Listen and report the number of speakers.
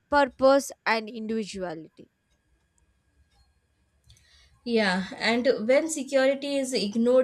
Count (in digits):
2